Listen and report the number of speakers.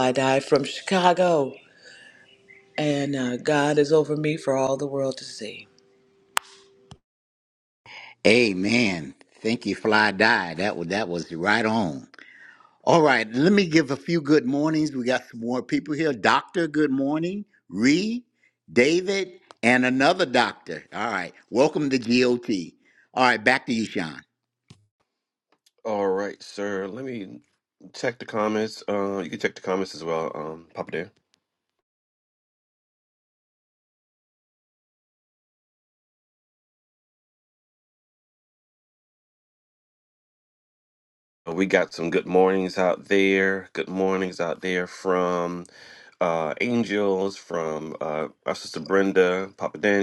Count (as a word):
three